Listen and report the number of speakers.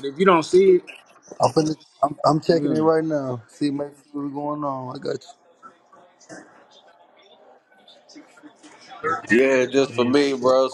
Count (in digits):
3